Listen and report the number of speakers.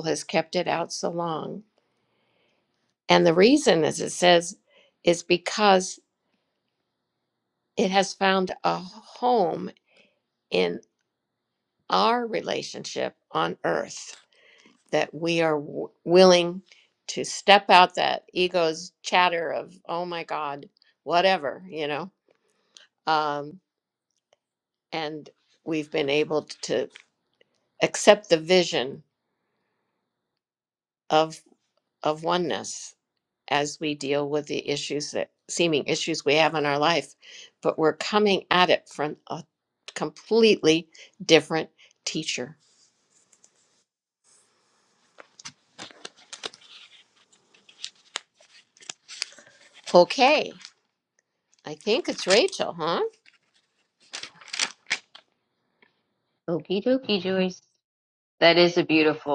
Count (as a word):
two